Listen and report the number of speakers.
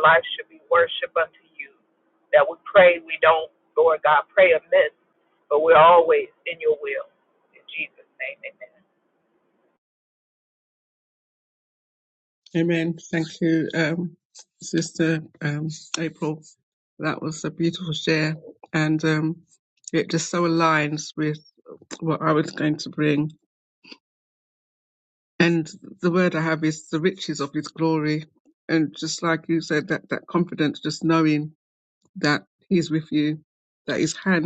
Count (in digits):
2